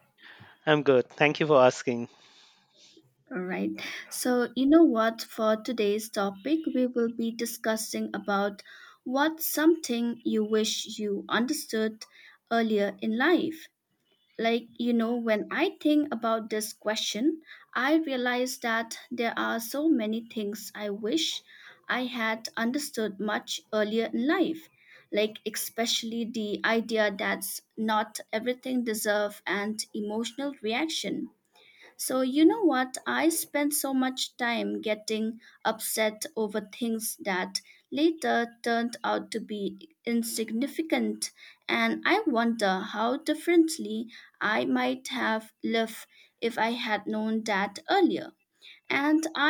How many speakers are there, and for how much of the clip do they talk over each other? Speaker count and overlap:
2, no overlap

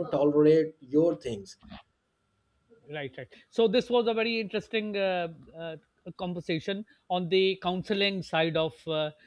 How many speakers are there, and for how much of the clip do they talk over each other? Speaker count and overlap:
2, no overlap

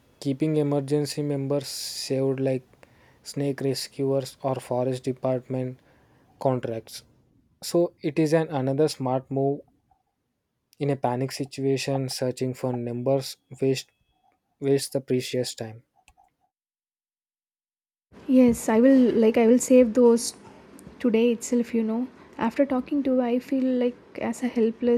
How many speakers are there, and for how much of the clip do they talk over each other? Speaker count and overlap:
2, no overlap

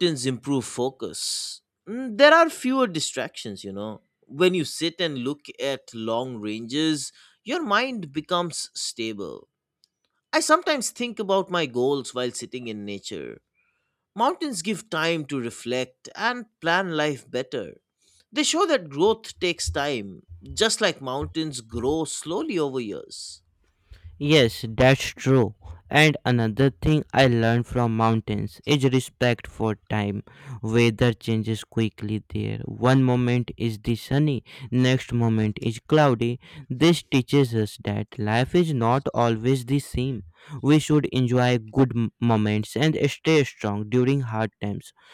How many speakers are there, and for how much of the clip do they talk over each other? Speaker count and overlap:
2, no overlap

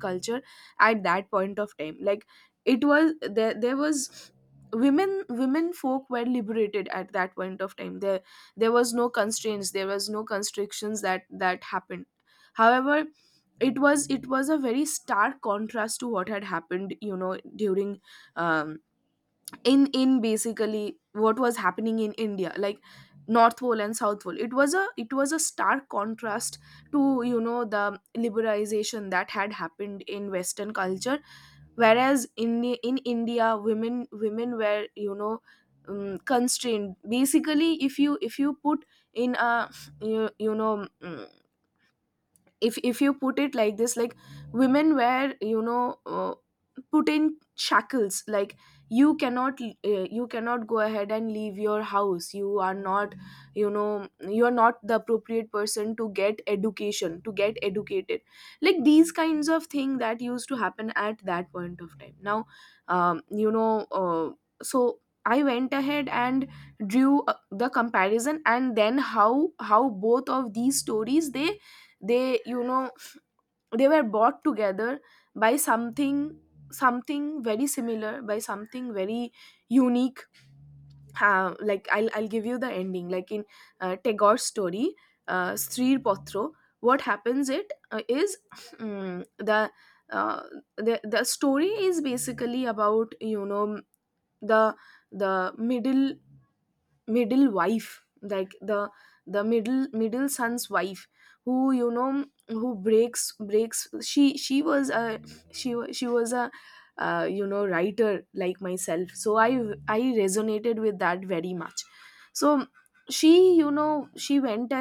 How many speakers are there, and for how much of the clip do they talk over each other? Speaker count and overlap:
1, no overlap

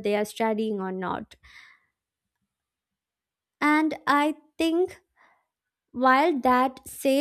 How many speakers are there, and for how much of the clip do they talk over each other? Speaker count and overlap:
1, no overlap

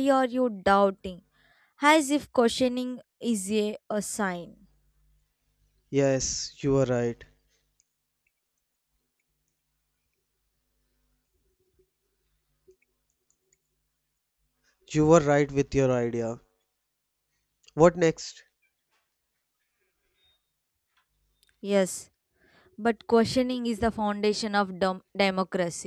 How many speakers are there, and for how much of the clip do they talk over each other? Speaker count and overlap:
2, no overlap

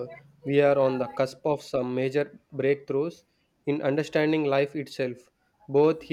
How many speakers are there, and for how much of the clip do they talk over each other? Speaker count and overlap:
1, no overlap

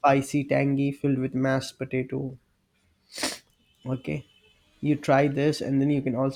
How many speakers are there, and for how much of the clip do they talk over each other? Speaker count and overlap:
1, no overlap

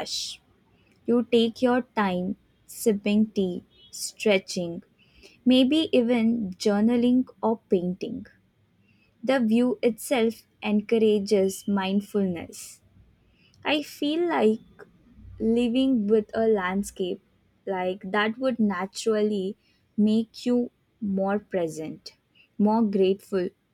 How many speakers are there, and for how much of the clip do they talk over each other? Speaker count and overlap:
1, no overlap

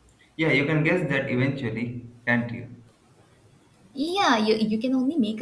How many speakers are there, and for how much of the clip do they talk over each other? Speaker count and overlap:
2, no overlap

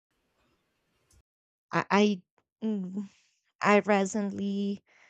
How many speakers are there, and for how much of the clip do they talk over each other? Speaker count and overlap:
1, no overlap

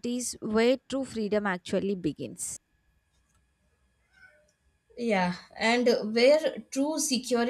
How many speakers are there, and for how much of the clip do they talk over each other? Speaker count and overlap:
2, no overlap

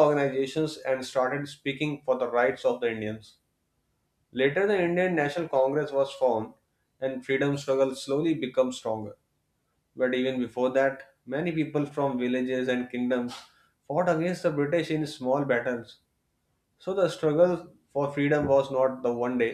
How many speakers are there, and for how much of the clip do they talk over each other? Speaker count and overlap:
1, no overlap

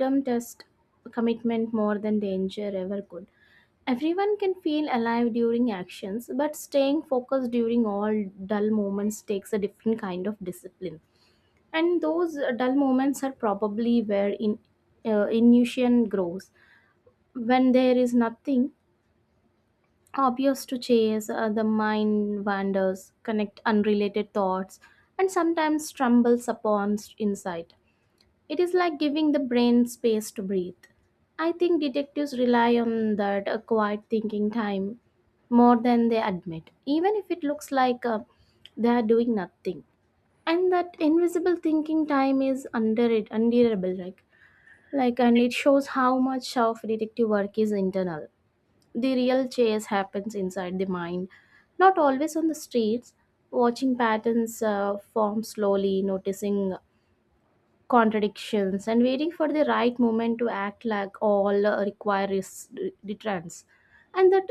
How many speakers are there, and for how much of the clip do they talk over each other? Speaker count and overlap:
1, no overlap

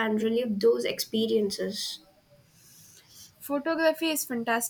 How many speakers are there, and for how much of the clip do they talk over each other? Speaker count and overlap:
2, no overlap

